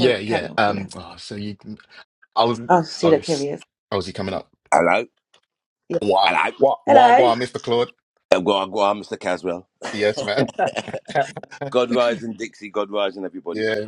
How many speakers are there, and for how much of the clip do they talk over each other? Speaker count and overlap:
three, about 16%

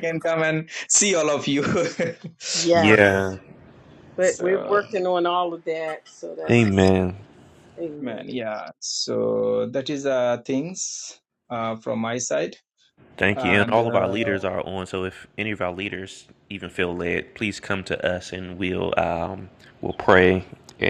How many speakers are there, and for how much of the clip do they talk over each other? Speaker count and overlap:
three, about 13%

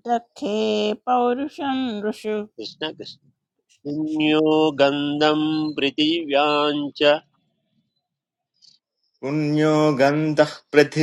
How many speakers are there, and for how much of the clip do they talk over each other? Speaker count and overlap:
three, no overlap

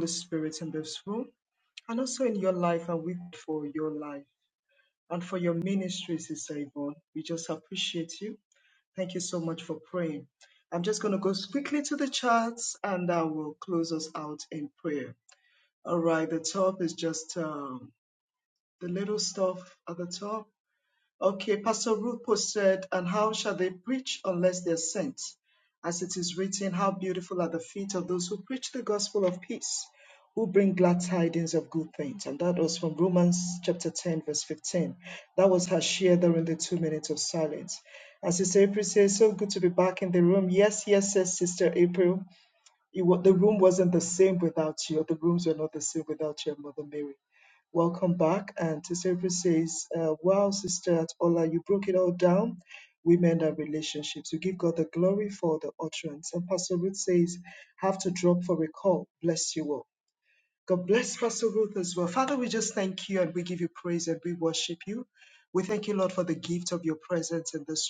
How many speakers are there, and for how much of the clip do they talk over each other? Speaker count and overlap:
one, no overlap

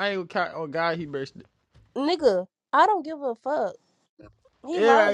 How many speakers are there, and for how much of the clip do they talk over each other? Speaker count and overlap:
two, about 8%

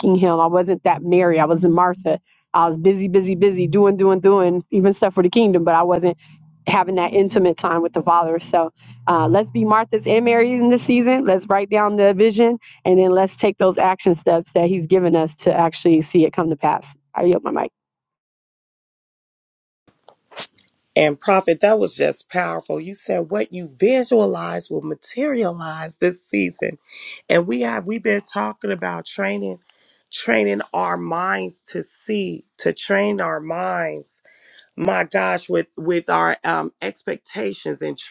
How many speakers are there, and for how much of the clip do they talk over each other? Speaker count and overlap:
two, no overlap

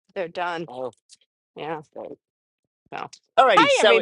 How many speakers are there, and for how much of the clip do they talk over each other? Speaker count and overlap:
two, about 12%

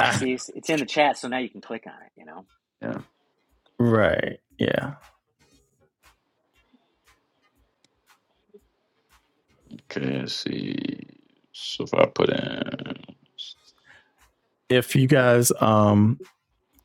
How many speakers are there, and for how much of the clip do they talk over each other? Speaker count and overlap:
three, about 2%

